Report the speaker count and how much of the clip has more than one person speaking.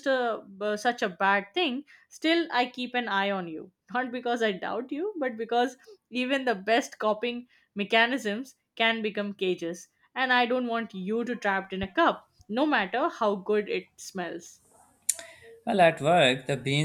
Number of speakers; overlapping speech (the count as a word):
two, no overlap